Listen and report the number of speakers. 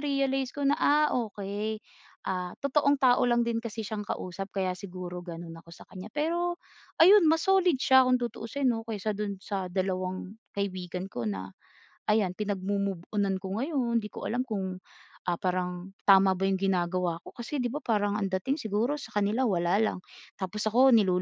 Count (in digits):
1